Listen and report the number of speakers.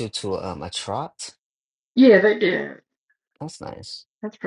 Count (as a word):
two